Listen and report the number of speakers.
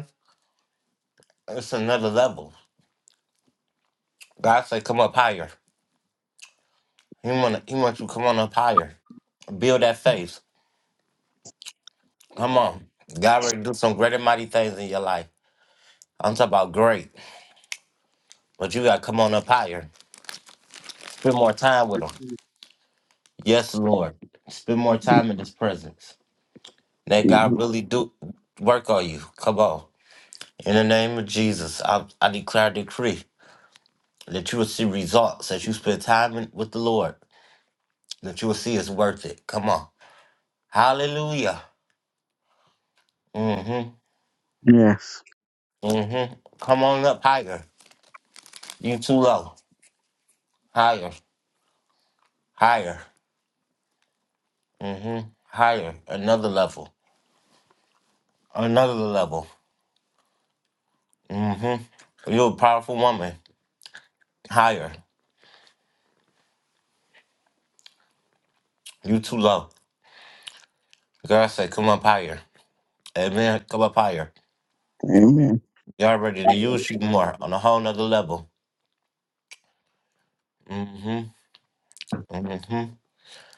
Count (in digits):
2